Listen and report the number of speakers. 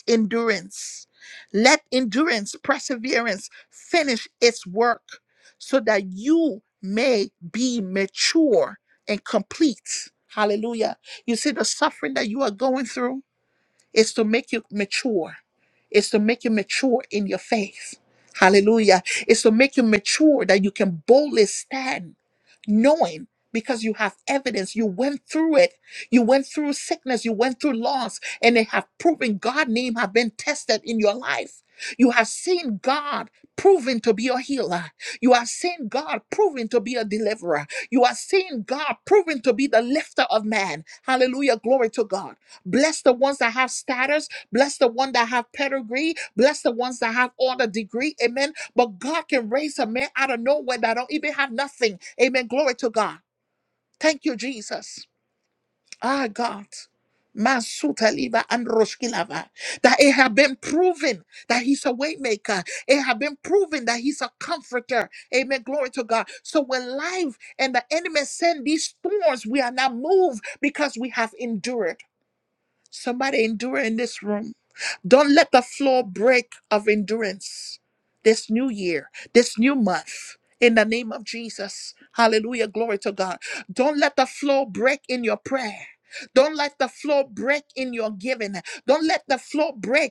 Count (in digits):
1